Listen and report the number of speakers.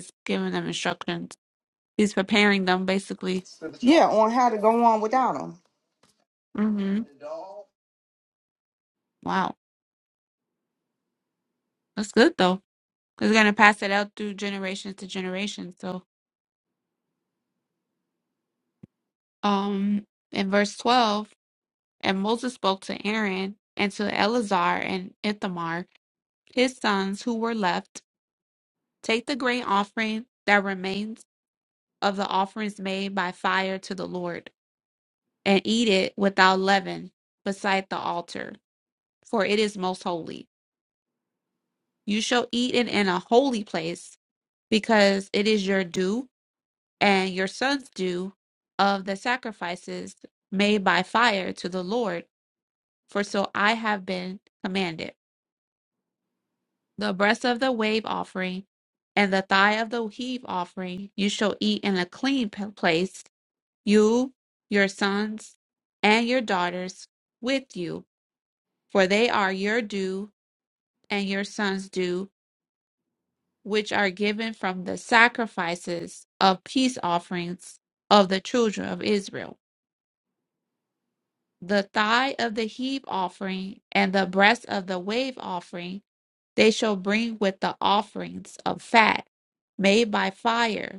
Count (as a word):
two